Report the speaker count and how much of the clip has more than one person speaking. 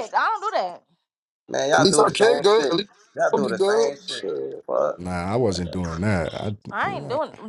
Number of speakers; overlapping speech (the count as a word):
four, about 34%